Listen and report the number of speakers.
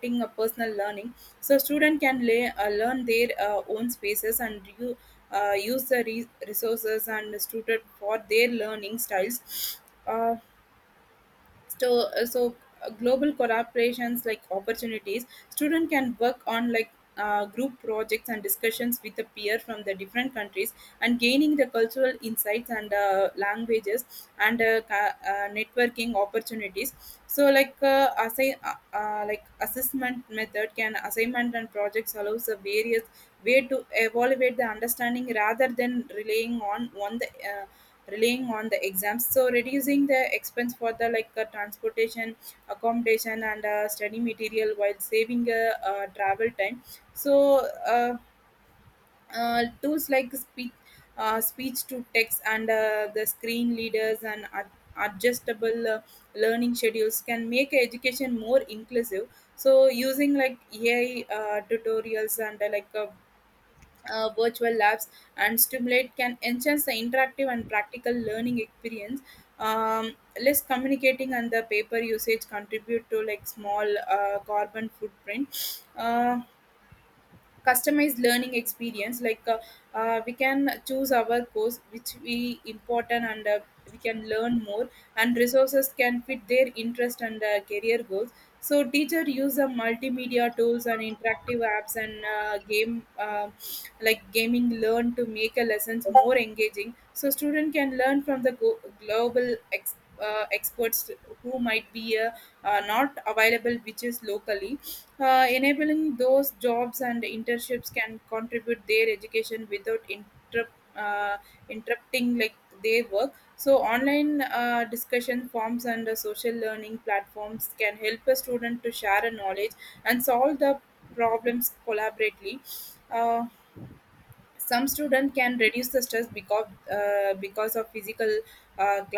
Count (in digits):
1